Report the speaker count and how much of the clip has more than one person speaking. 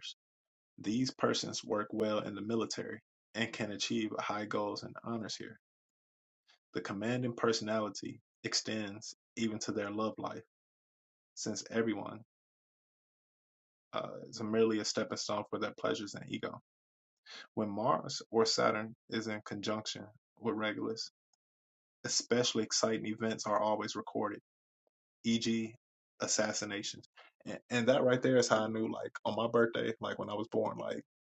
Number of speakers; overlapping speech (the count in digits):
1, no overlap